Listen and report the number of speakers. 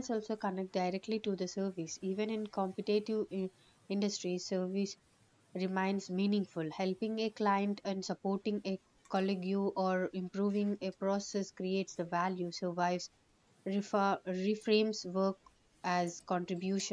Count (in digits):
1